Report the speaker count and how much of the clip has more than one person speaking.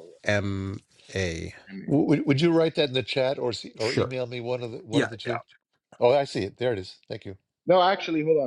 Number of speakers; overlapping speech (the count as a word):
three, about 10%